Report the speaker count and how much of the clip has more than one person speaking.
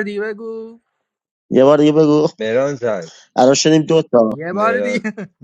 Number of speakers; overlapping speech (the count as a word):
three, about 10%